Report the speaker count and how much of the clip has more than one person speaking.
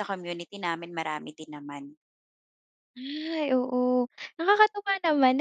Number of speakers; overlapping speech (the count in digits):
2, no overlap